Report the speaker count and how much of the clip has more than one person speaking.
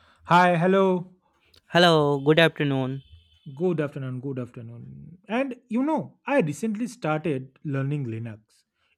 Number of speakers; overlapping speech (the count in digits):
2, no overlap